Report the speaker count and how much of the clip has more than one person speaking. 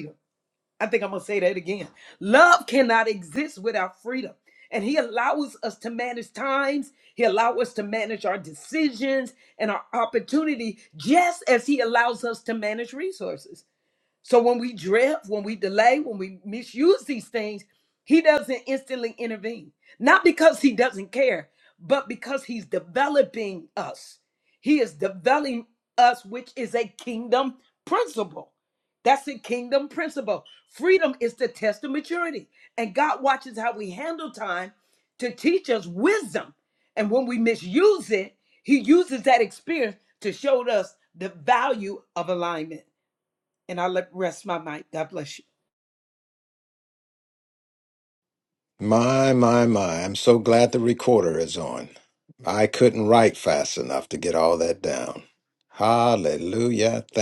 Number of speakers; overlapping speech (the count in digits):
2, no overlap